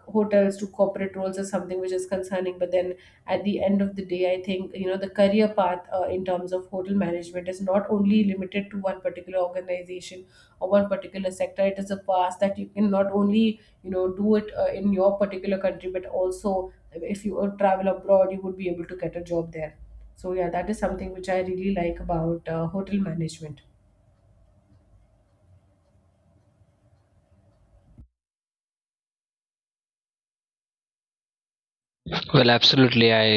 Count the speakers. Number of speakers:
two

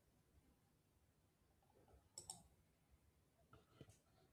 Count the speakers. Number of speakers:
zero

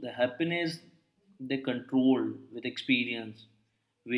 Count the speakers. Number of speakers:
one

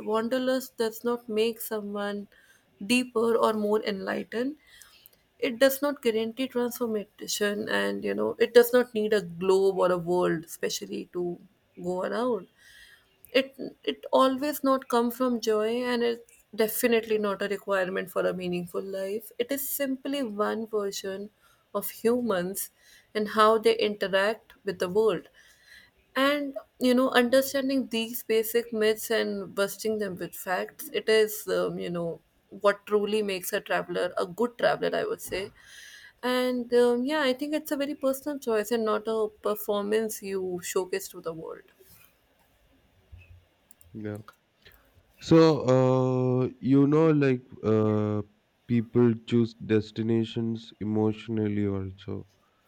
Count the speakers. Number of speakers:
two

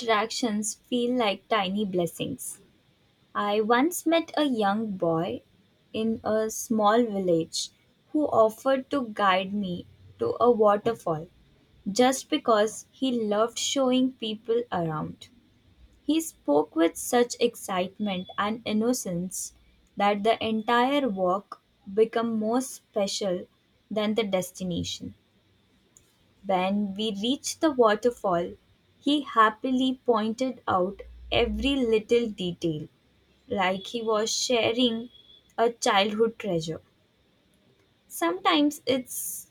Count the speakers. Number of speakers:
one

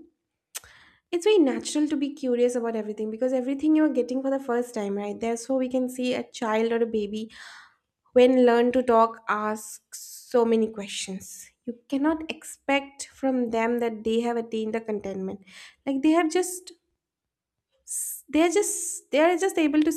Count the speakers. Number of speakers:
one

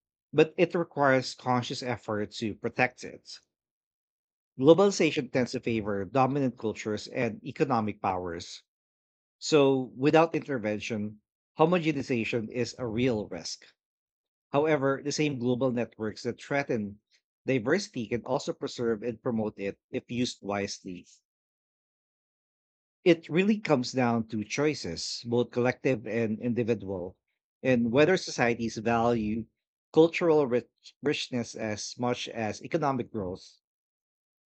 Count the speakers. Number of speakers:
one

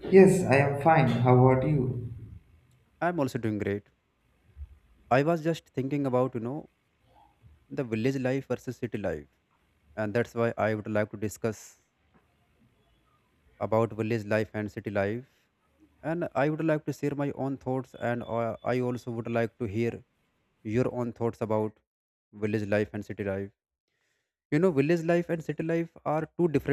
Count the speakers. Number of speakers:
two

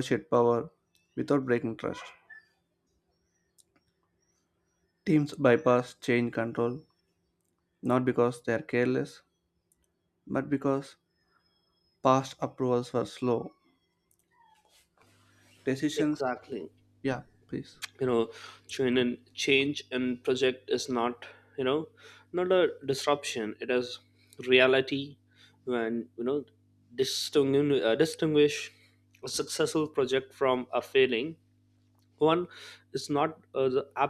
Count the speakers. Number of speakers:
two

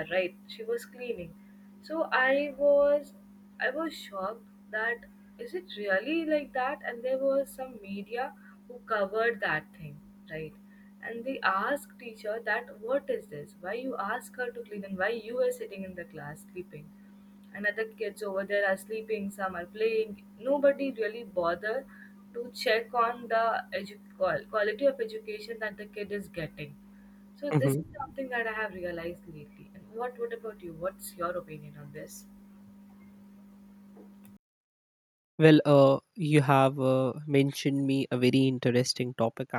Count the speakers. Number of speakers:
two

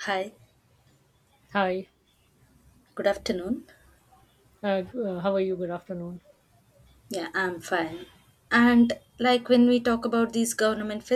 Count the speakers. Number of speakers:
two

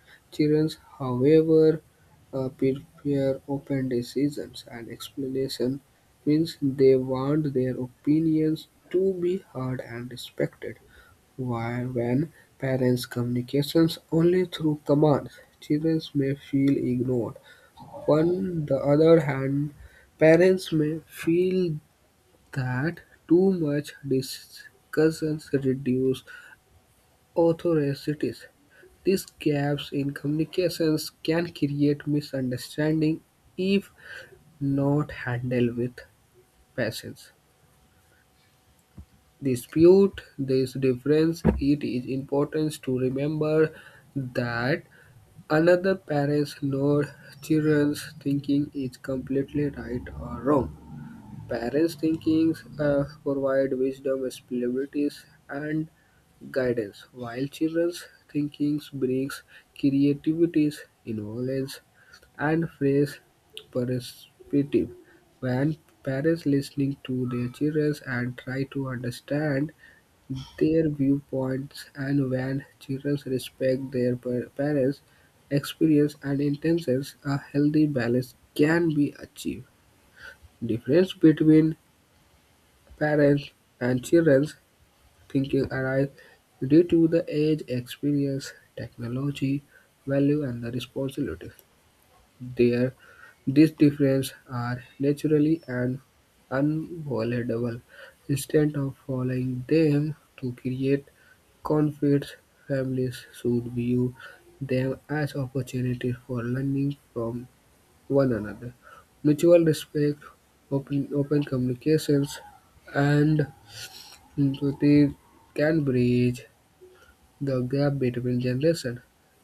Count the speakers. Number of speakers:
one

